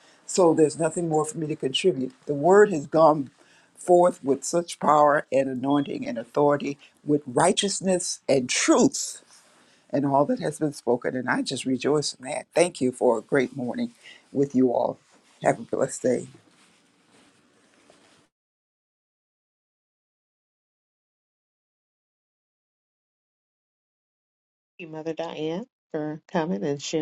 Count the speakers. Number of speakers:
2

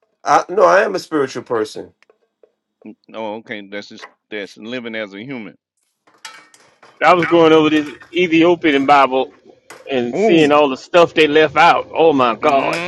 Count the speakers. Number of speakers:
3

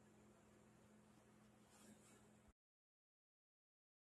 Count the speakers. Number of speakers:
0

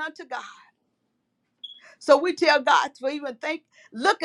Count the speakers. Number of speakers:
1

